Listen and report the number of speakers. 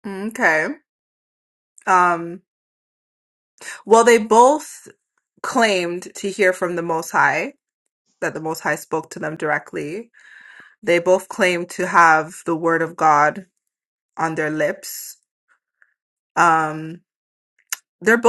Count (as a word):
one